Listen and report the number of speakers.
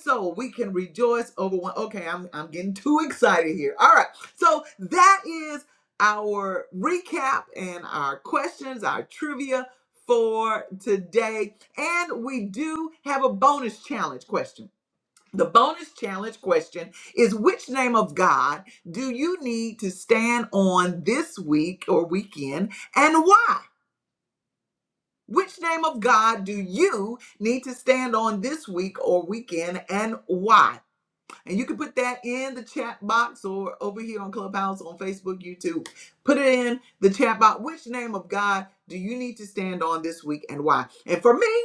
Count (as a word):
one